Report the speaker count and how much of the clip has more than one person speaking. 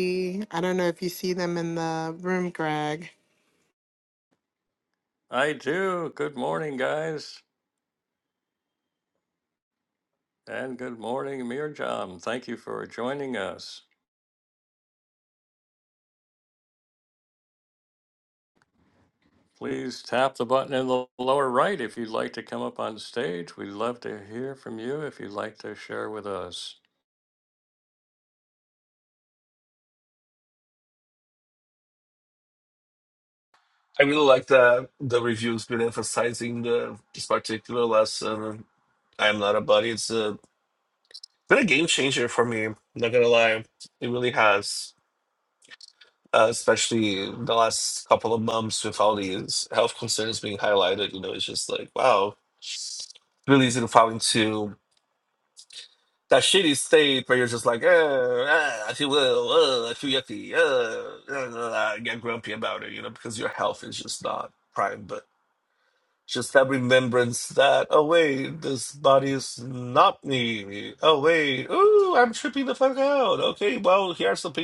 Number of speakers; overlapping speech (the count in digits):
3, no overlap